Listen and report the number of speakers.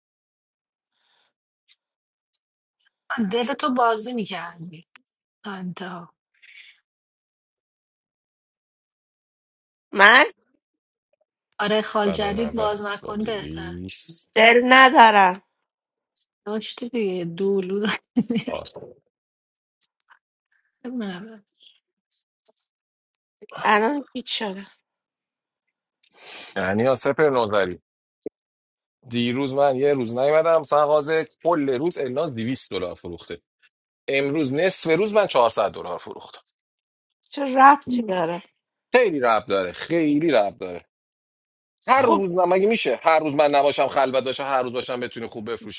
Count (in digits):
3